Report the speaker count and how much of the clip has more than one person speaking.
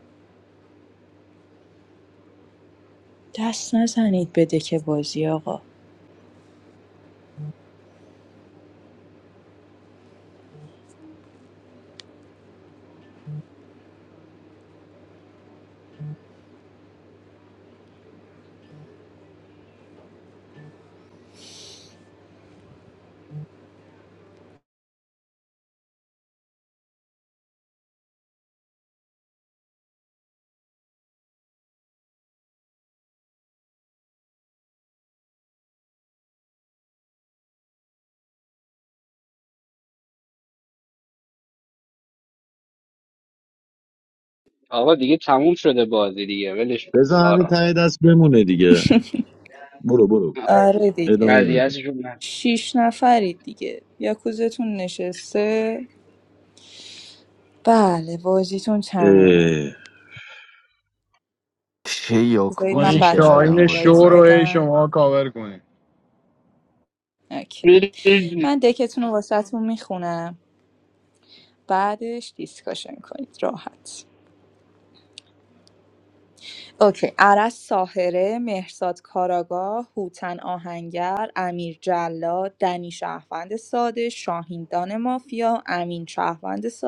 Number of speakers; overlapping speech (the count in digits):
5, about 5%